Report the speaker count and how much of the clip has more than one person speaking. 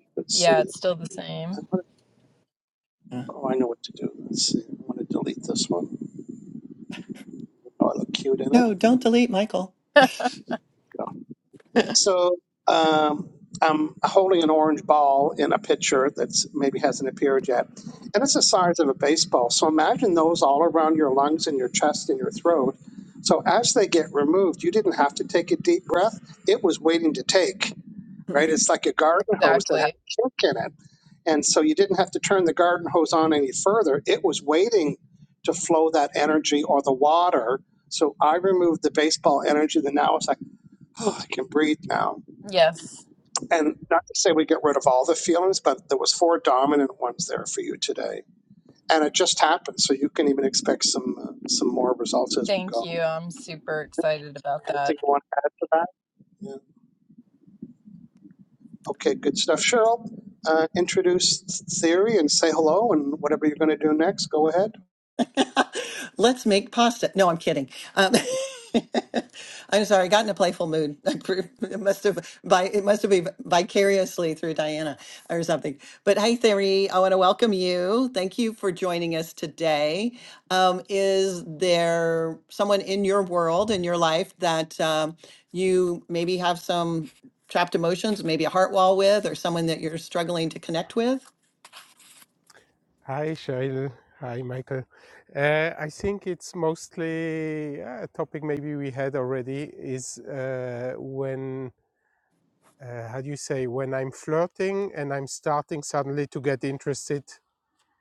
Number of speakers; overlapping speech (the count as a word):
four, about 2%